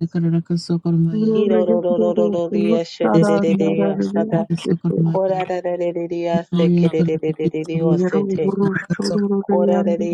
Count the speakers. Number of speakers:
3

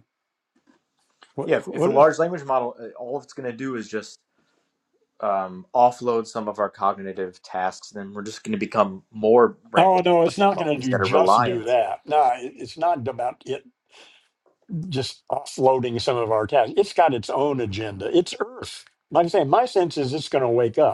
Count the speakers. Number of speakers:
2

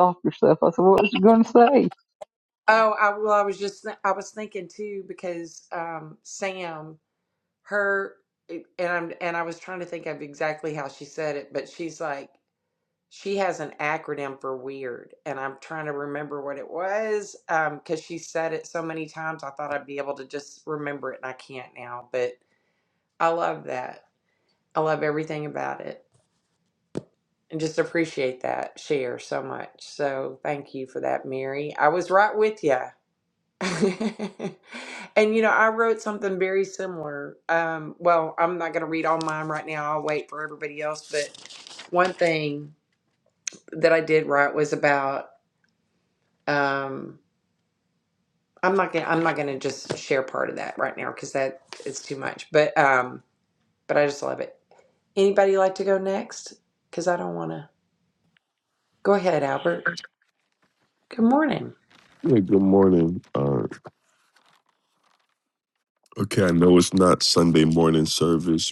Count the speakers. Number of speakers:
3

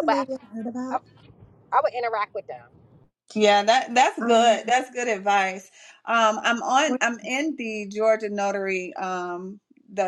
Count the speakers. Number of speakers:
3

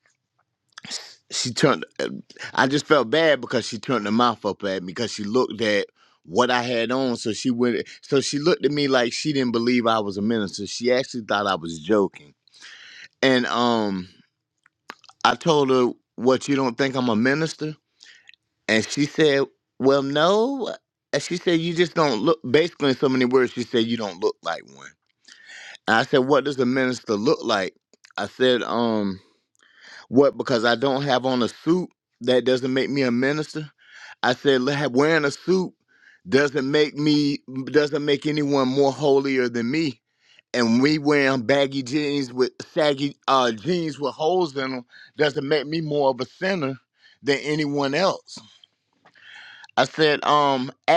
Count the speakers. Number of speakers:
1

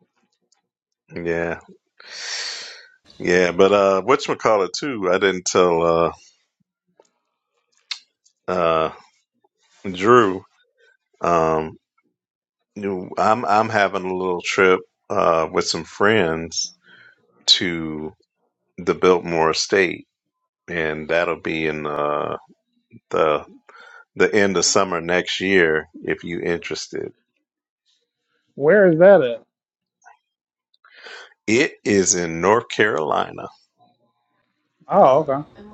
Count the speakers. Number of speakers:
2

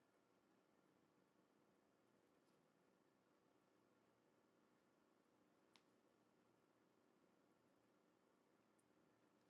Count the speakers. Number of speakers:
0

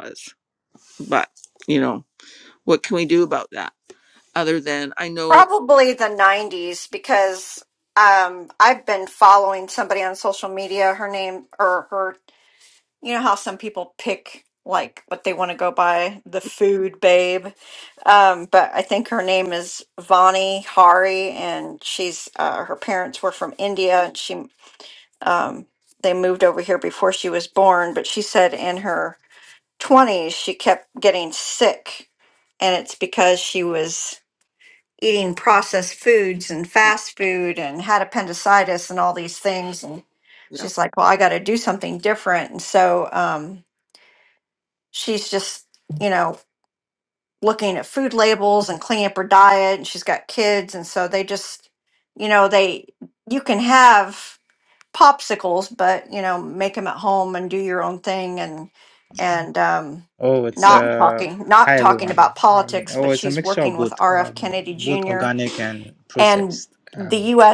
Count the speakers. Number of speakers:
3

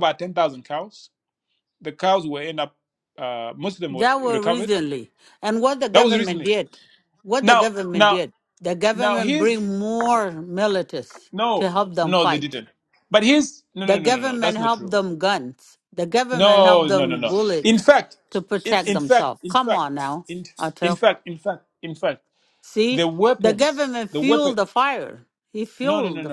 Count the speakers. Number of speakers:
2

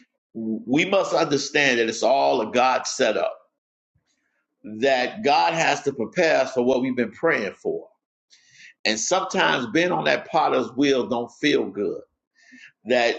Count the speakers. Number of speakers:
1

